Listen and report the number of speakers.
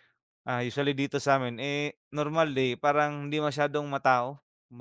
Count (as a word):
one